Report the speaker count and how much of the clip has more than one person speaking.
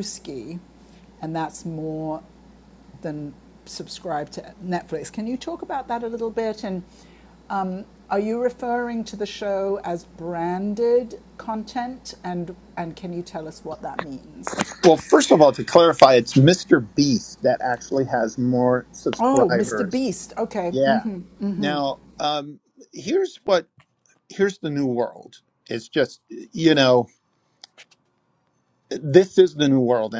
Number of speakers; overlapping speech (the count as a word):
two, about 4%